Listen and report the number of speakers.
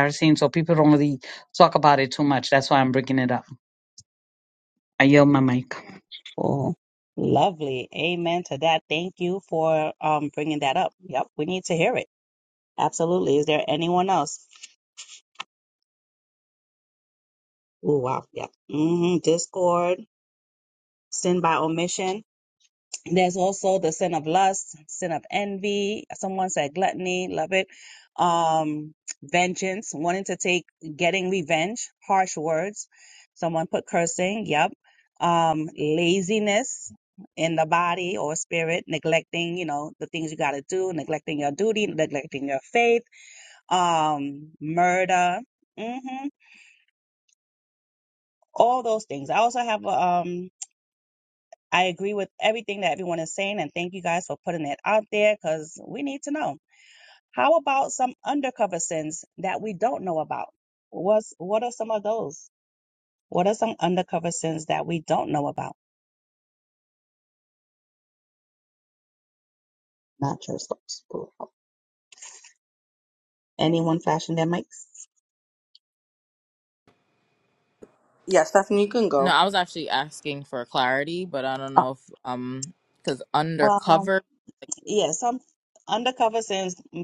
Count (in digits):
4